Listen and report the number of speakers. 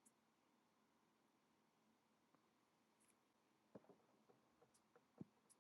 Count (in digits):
0